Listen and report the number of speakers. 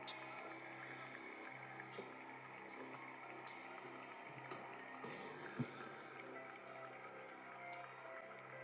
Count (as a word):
zero